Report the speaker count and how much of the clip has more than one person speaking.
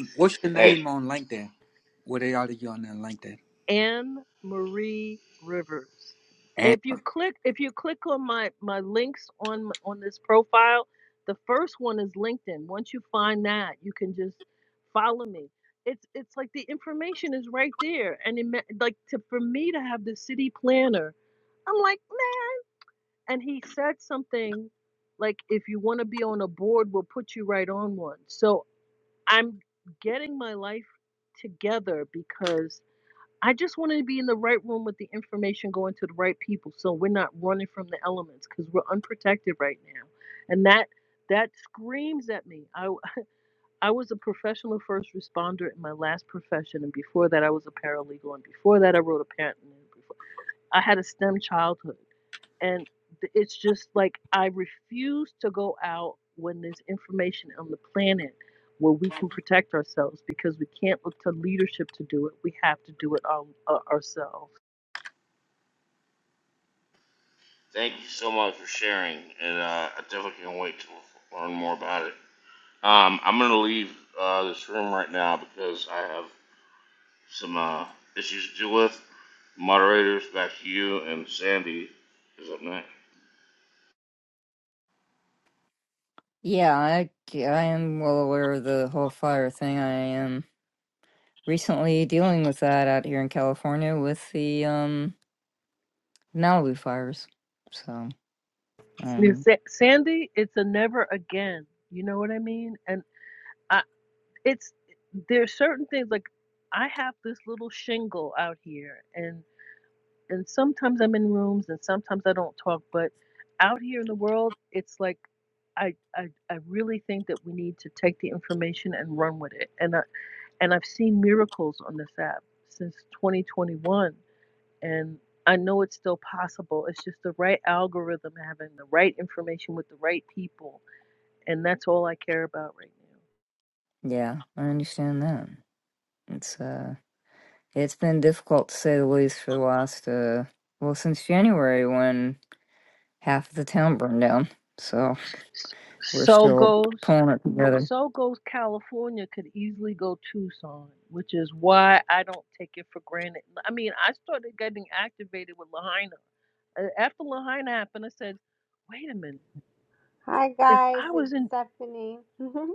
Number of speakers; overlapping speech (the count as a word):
five, about 1%